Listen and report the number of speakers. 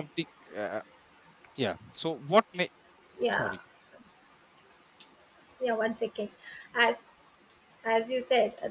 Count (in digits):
2